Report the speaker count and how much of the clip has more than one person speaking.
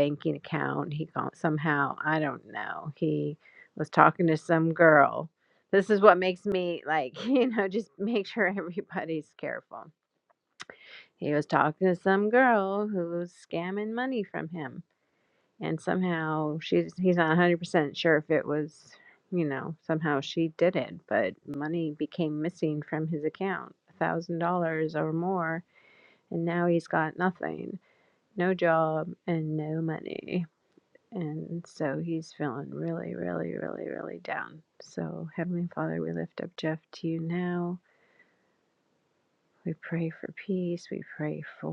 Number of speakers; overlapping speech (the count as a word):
one, no overlap